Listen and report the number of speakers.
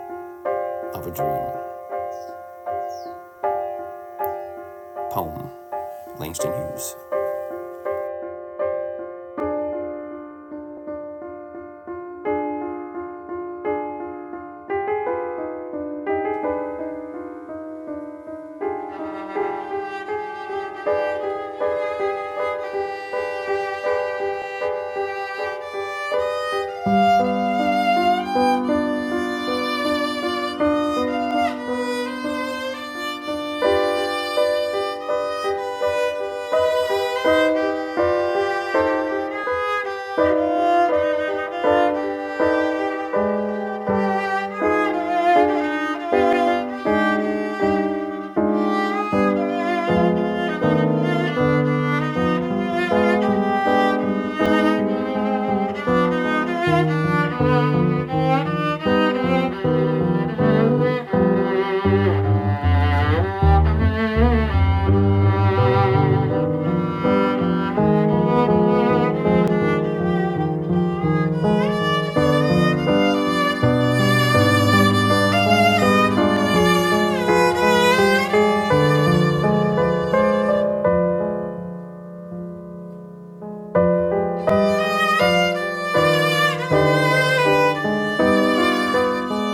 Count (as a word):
two